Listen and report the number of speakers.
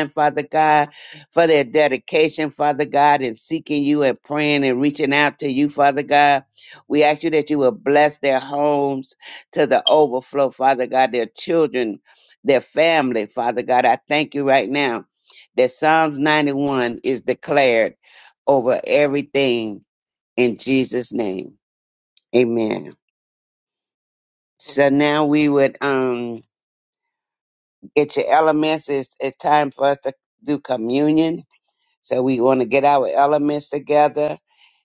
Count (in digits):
1